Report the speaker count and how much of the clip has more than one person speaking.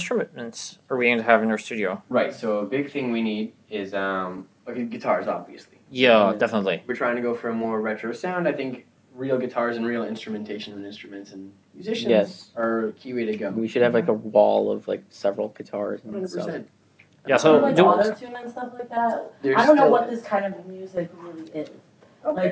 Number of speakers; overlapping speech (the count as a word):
four, about 17%